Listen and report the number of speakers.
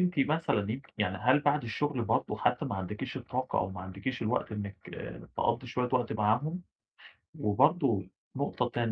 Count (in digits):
1